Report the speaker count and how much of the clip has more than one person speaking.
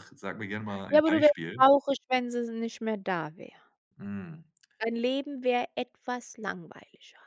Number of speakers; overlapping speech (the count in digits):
2, about 10%